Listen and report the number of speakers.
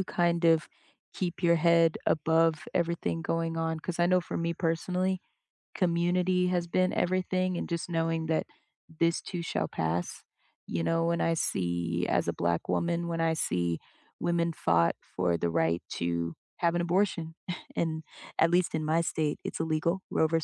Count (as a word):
one